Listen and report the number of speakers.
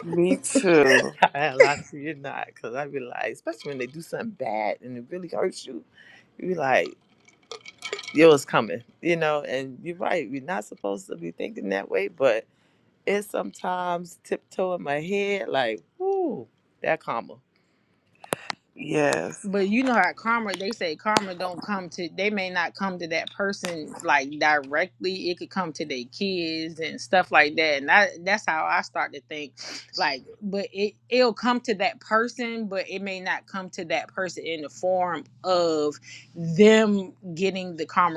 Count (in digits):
3